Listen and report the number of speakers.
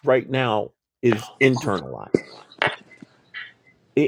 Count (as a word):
one